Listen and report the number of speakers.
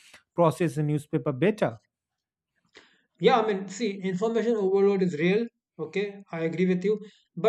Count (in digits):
2